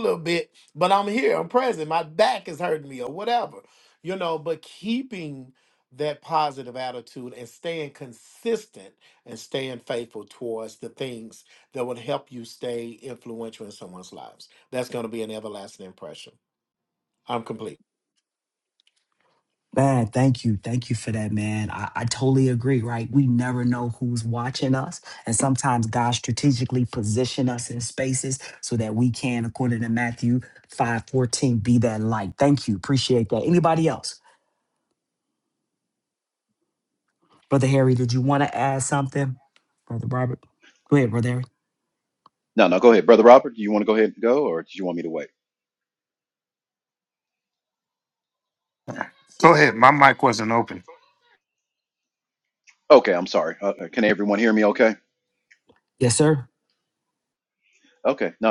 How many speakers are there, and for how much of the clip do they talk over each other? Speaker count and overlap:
four, no overlap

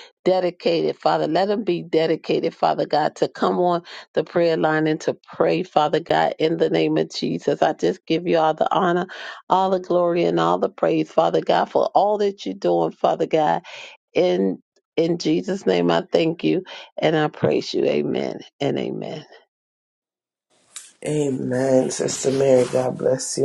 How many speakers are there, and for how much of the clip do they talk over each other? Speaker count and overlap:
two, no overlap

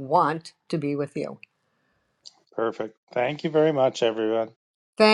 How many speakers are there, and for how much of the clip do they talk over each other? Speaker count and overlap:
two, no overlap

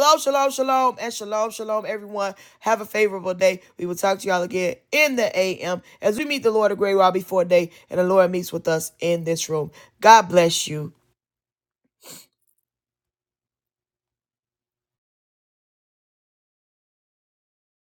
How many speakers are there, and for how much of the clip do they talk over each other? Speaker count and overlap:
one, no overlap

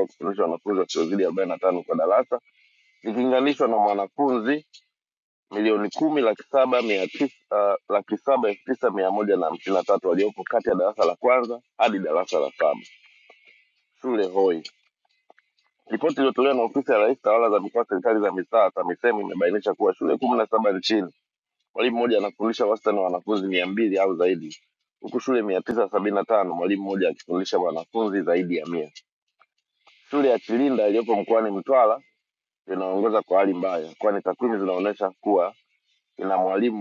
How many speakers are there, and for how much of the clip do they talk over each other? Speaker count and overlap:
one, no overlap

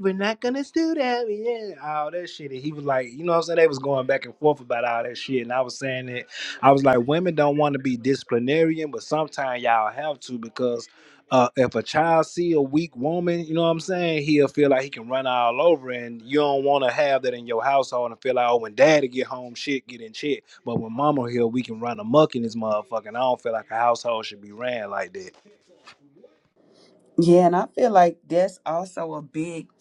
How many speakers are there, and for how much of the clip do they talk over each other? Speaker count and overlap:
two, no overlap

